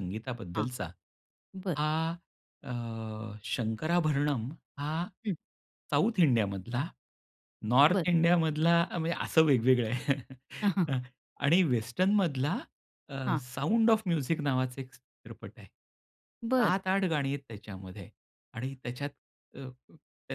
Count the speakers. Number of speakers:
2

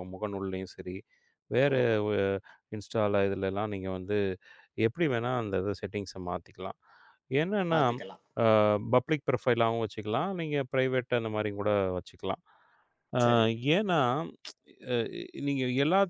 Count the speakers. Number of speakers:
2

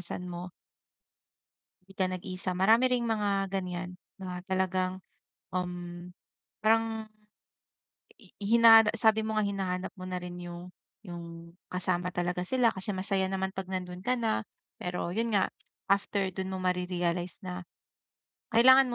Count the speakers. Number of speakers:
1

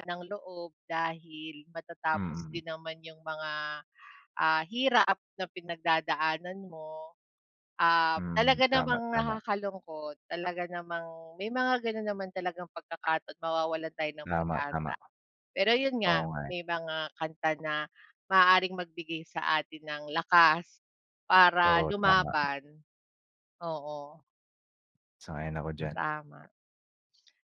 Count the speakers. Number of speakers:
2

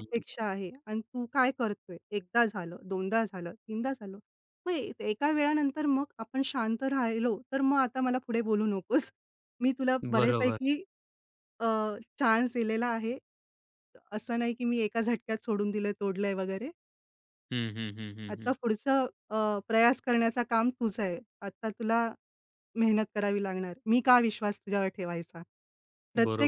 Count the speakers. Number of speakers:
2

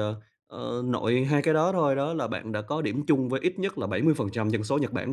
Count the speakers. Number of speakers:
1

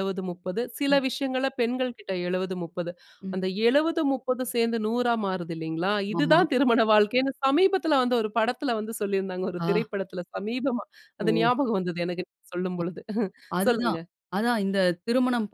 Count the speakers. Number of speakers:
2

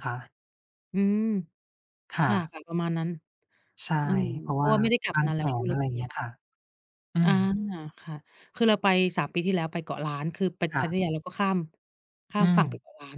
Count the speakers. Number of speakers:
2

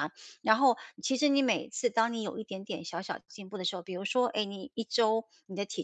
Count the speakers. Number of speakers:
1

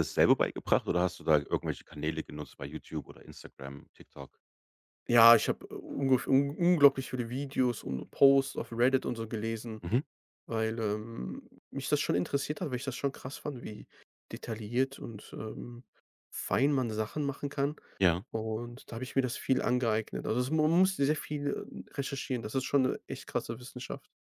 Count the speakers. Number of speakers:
2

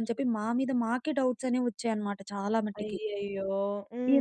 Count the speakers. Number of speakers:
2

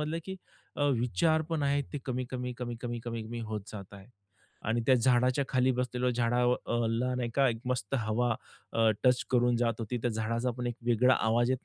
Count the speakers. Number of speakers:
1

